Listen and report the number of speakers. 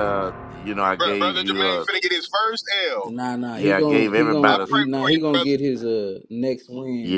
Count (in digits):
3